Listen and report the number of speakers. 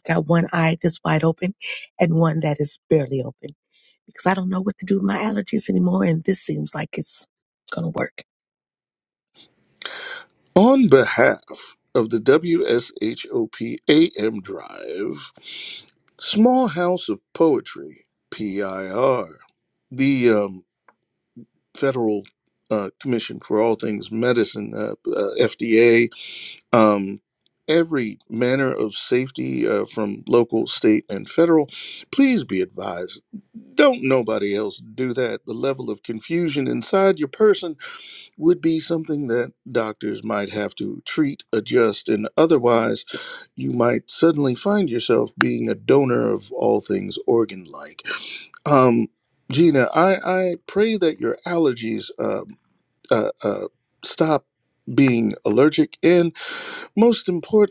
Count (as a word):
two